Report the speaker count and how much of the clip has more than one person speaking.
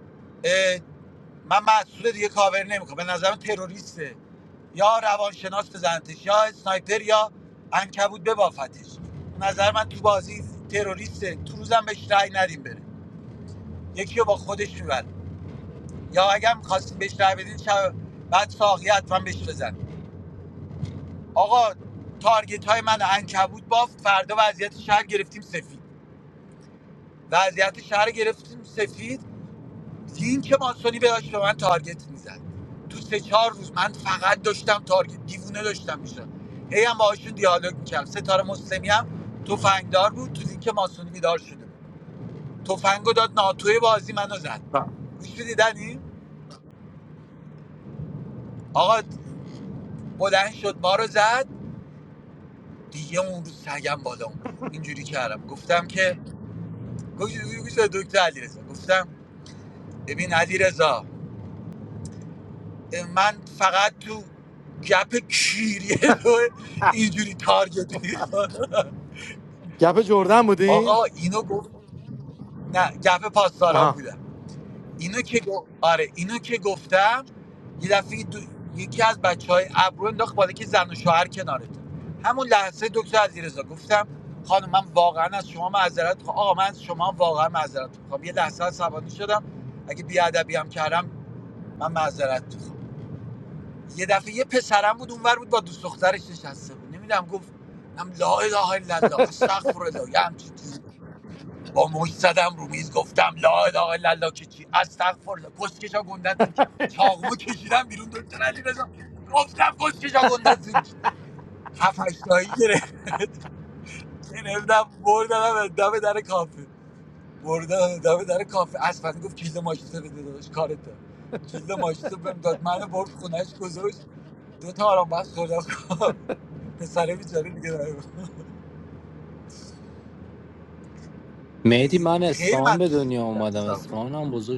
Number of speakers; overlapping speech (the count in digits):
3, about 2%